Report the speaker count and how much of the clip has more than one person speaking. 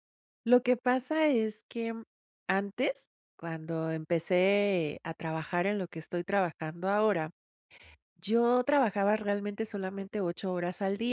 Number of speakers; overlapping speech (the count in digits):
1, no overlap